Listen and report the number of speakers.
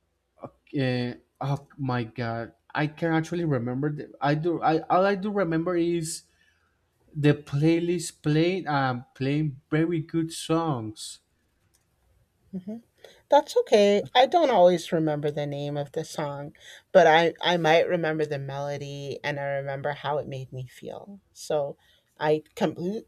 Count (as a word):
two